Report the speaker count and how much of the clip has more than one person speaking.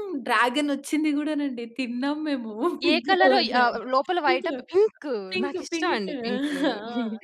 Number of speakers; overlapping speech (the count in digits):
2, about 29%